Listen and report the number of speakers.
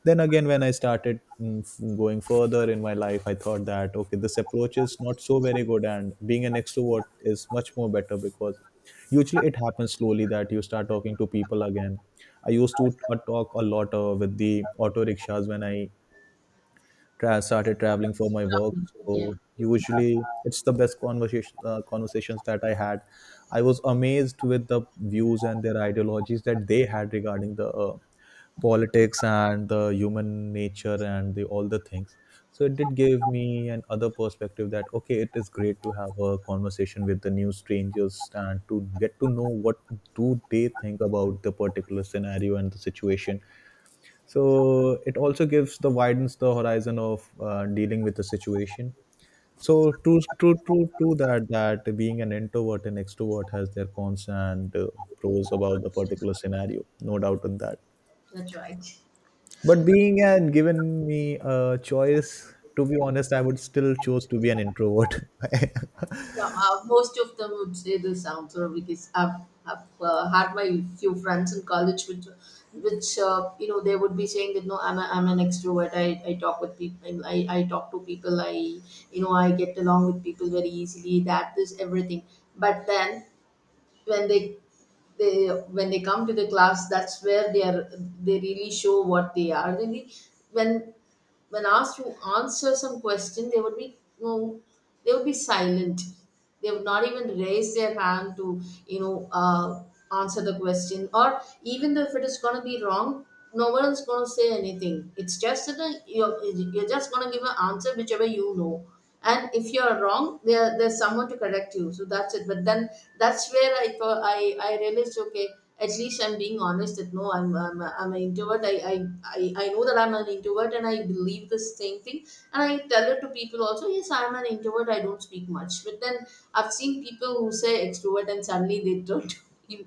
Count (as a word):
two